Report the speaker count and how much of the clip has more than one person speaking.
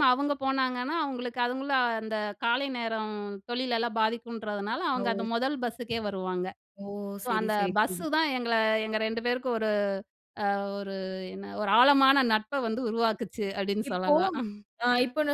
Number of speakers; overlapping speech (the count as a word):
two, about 7%